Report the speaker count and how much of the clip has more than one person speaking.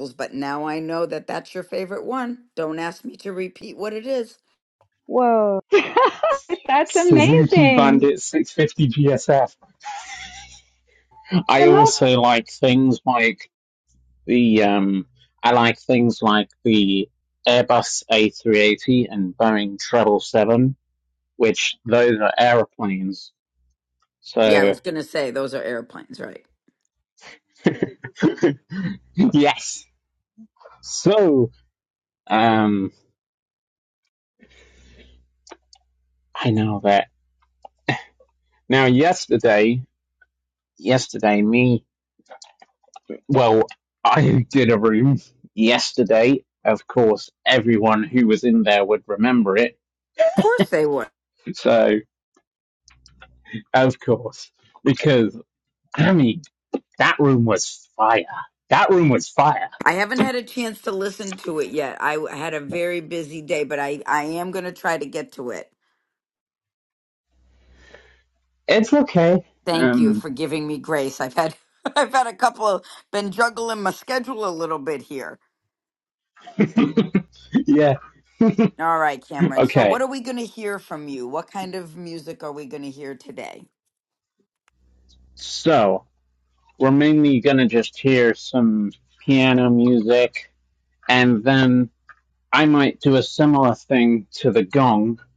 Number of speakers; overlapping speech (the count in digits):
3, about 3%